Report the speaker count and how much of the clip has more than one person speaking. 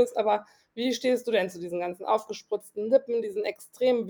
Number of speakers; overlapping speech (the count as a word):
one, no overlap